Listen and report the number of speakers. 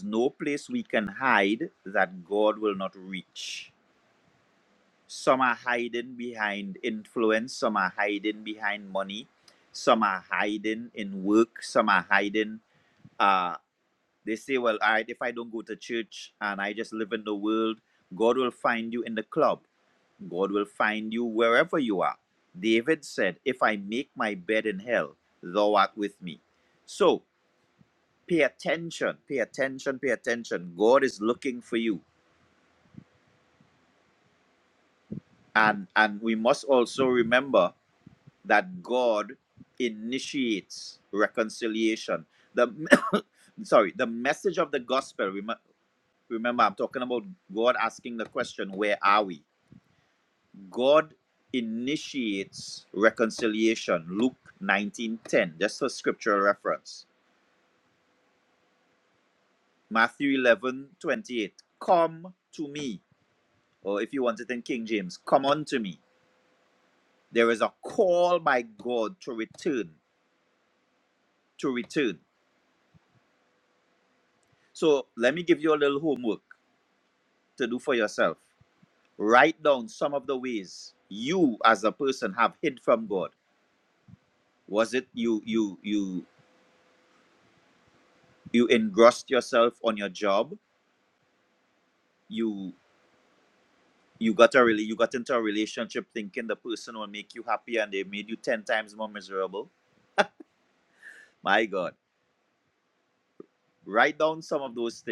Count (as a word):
one